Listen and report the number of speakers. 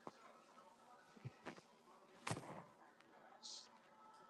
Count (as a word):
zero